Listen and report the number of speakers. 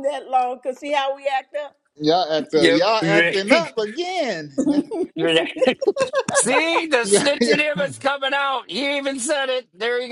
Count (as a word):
three